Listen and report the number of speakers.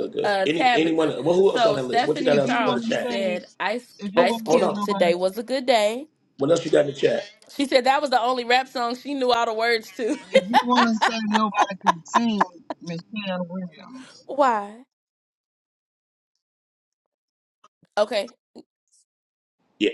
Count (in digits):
3